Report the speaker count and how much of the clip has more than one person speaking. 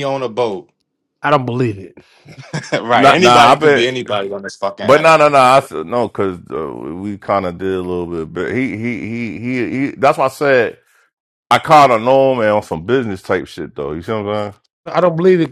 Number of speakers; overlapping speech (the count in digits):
3, about 8%